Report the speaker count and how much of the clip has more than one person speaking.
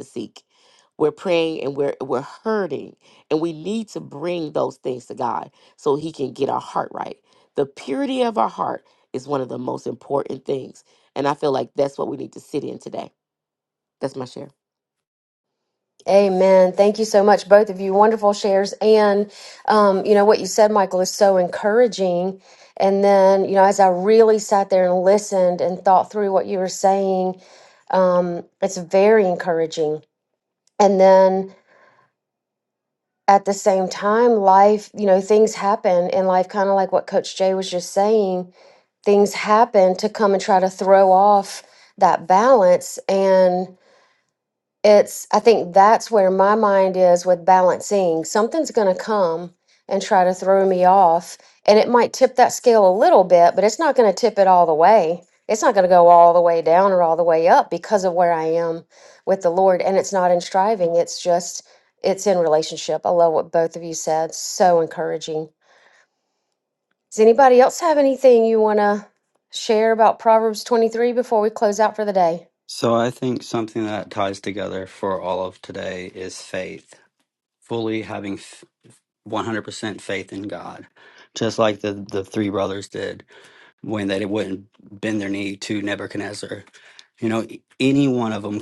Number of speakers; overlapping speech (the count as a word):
three, no overlap